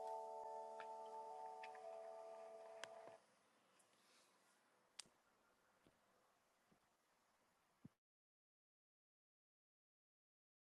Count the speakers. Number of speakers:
zero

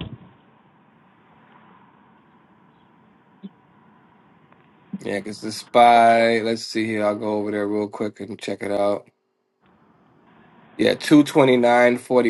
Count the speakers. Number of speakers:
one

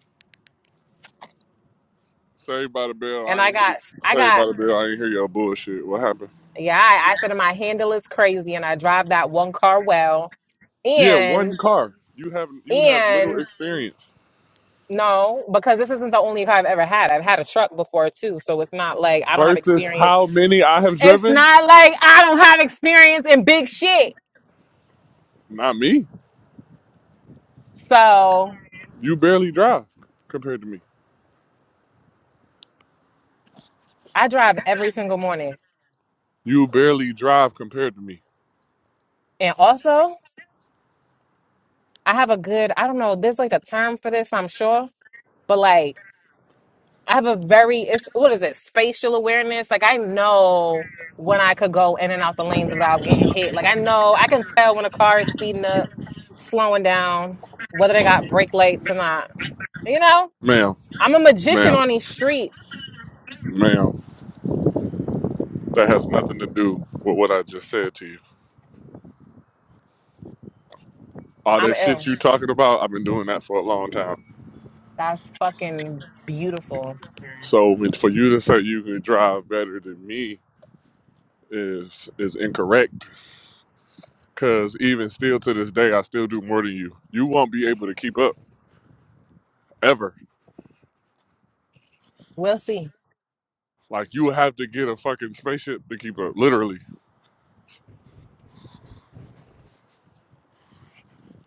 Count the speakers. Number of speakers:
two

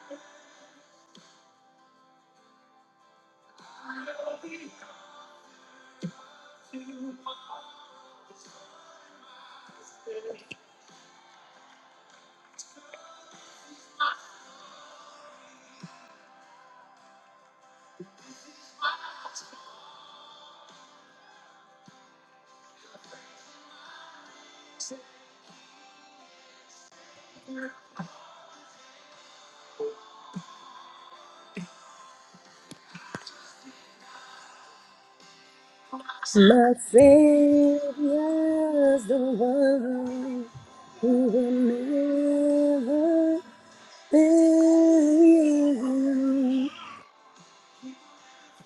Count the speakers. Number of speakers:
one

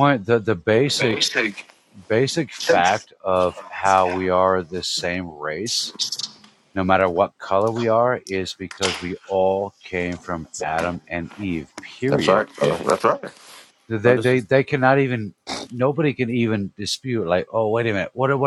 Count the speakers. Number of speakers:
two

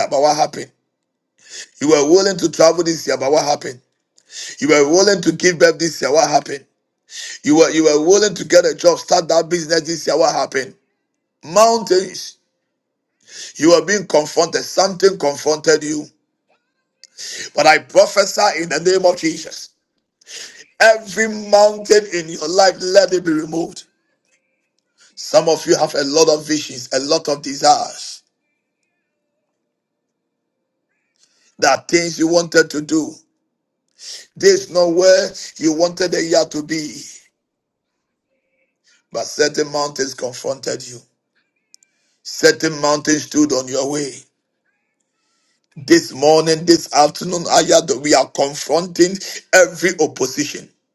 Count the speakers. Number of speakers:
one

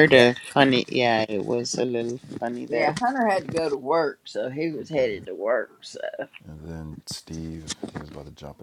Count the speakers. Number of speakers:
three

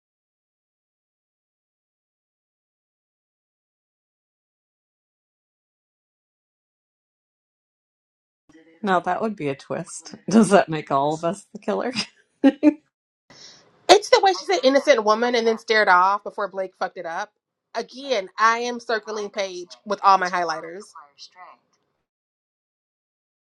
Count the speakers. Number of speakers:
two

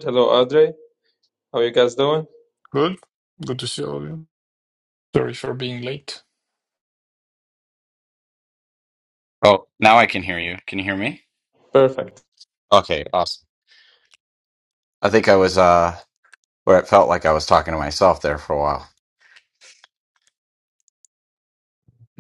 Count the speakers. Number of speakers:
four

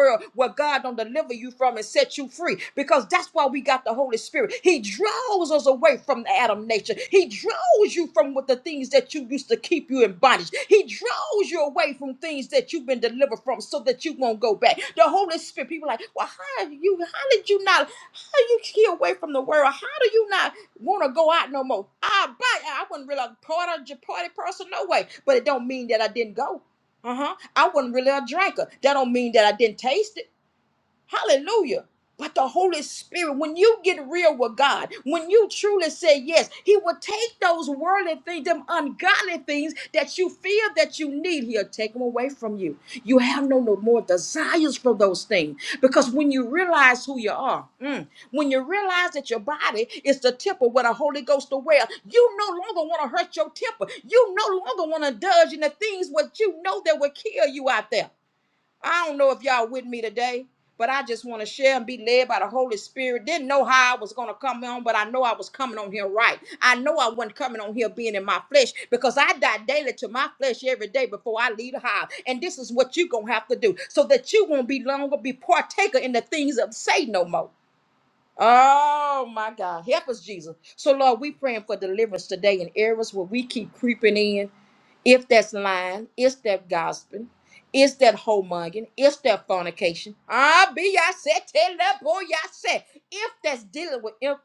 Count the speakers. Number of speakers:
one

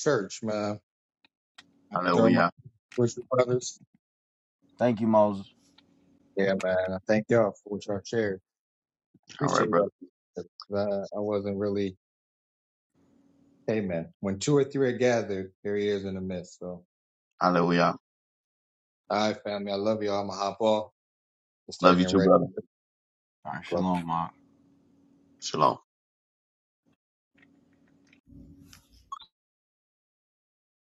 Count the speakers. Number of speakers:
three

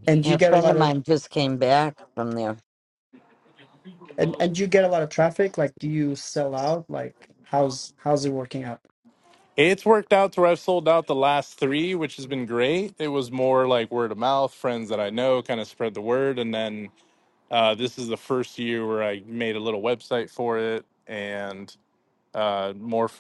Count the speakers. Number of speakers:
three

